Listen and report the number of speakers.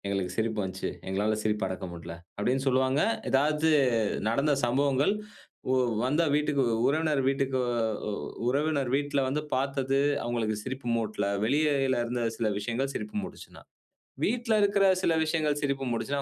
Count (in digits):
1